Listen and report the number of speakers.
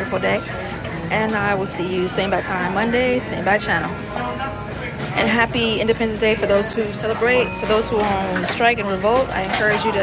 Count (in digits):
1